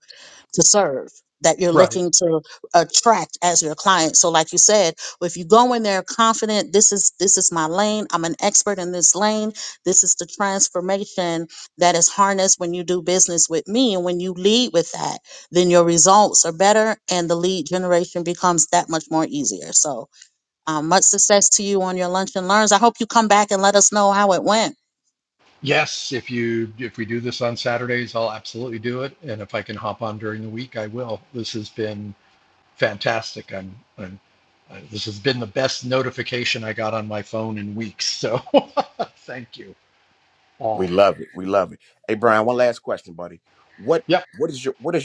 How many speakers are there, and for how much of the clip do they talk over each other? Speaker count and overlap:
three, about 1%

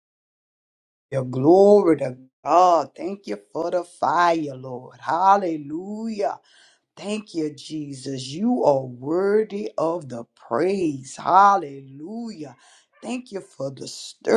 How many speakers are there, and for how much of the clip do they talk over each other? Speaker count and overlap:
one, no overlap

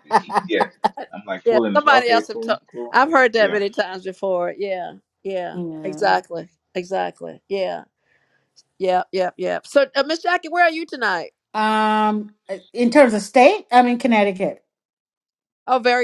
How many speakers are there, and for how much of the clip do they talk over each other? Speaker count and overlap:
three, about 9%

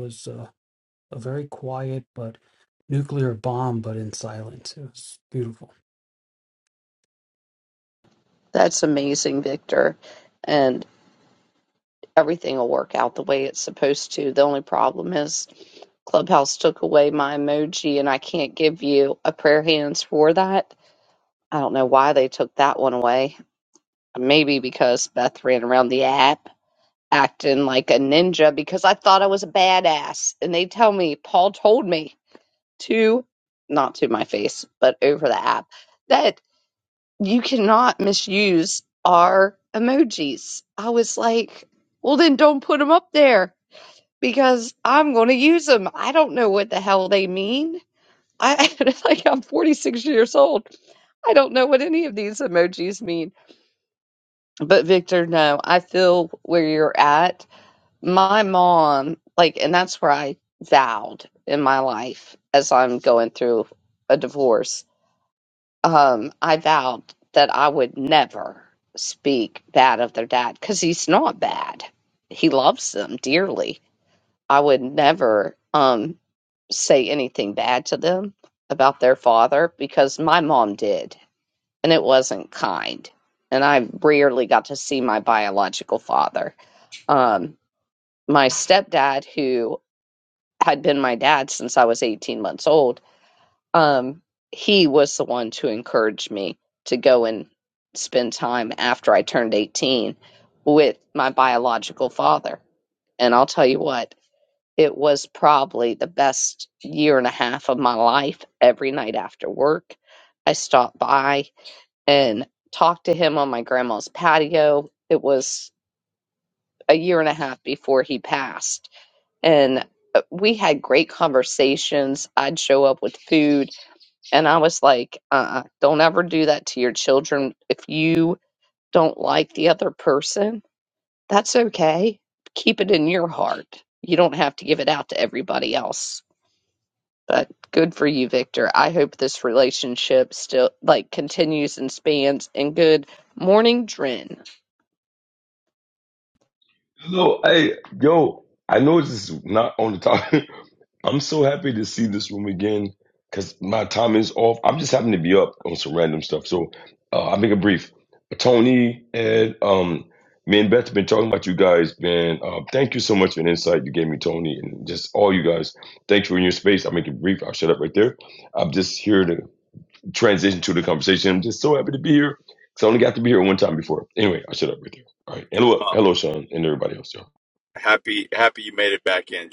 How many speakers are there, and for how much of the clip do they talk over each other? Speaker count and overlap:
four, no overlap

